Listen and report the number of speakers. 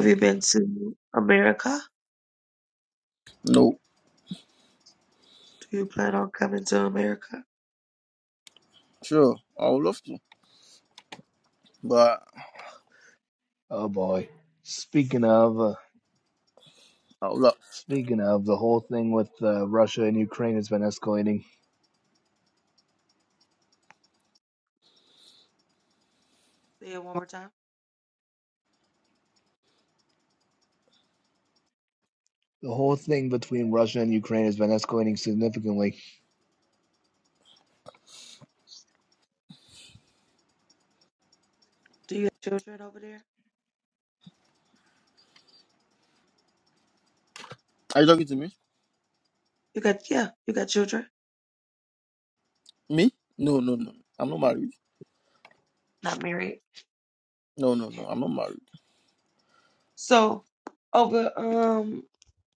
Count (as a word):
three